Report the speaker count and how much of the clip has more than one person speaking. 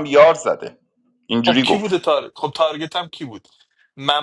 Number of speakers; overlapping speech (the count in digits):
2, about 12%